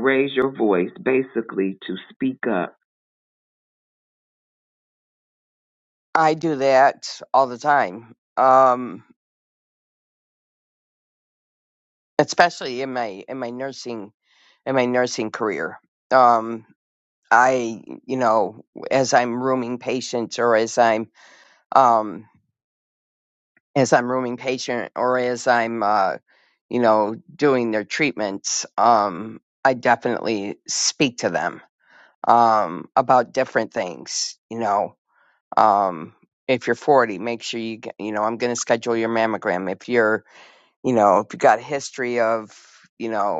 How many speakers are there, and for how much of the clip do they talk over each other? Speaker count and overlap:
two, no overlap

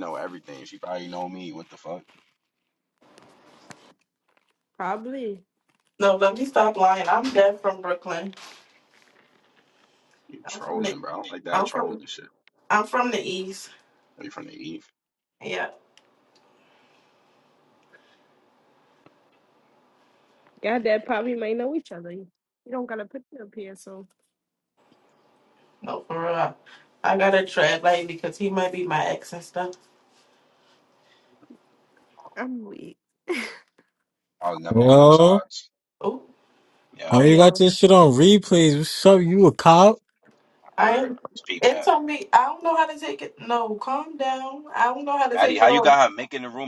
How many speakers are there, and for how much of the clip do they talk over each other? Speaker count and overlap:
four, about 7%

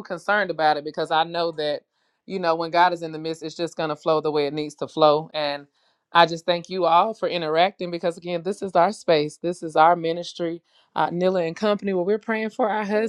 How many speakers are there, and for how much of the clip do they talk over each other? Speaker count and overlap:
one, no overlap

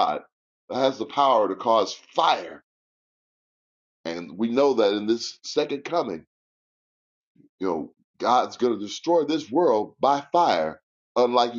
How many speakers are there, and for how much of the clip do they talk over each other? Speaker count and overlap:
one, no overlap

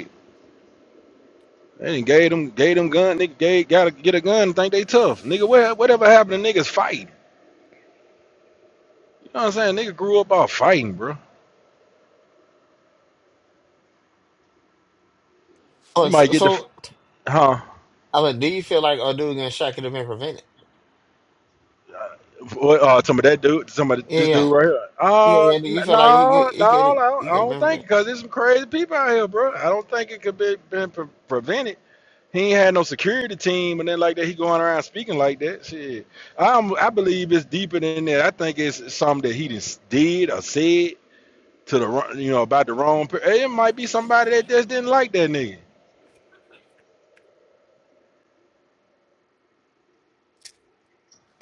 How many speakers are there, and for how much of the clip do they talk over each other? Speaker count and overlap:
two, about 7%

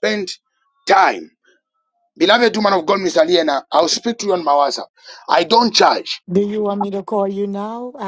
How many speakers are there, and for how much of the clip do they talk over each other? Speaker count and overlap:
two, no overlap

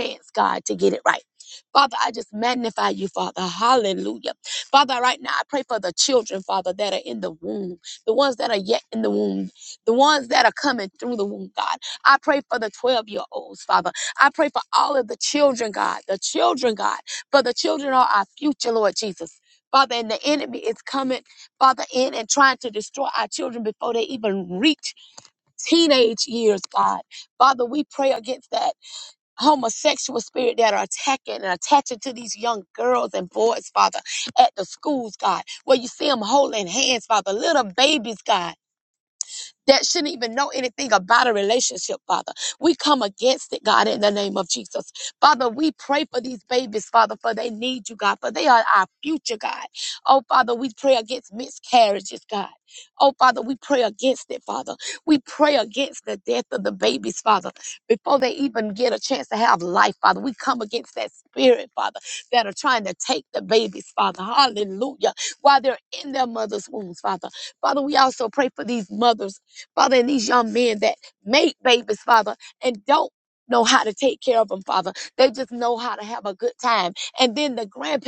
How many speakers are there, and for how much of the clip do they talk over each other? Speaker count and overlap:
one, no overlap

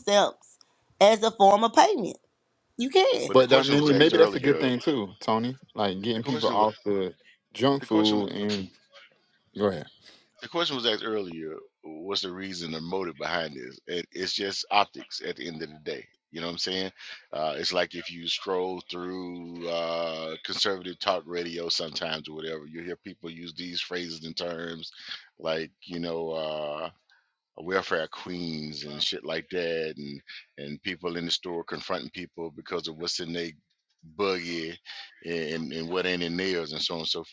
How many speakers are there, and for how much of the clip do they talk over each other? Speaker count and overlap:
three, about 7%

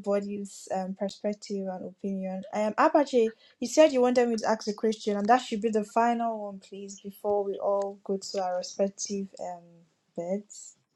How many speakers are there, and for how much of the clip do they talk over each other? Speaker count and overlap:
one, no overlap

